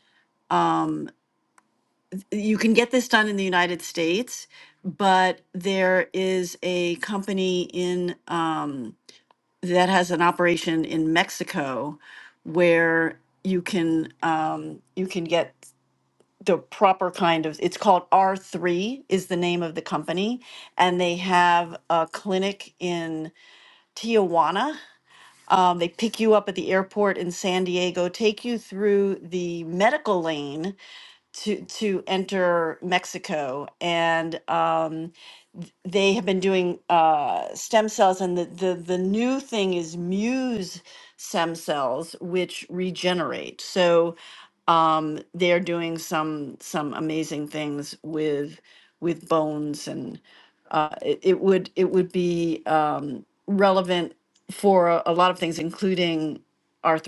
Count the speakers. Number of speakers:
1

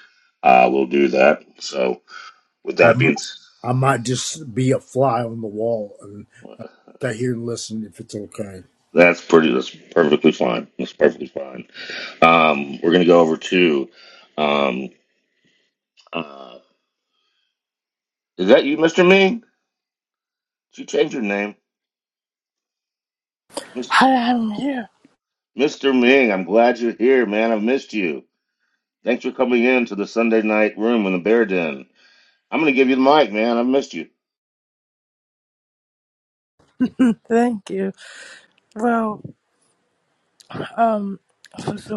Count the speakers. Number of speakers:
3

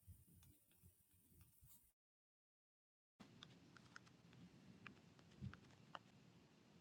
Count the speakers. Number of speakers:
0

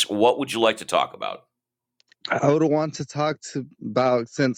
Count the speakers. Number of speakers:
2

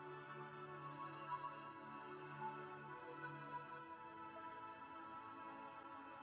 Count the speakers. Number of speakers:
0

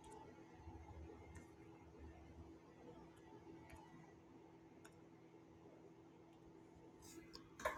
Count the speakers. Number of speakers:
0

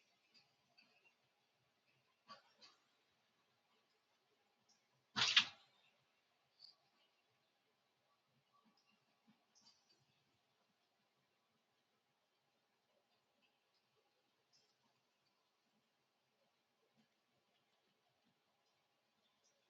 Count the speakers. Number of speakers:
0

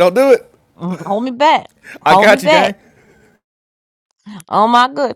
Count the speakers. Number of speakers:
2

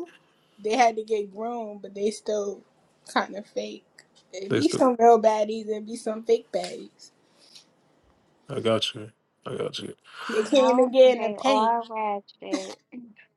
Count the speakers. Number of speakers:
3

